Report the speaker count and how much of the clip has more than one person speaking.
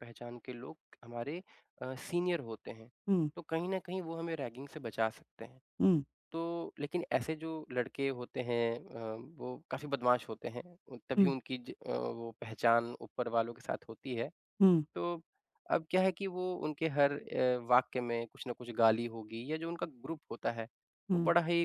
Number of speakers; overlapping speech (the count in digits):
2, about 2%